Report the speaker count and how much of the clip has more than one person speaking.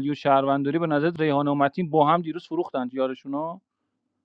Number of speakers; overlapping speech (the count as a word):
one, no overlap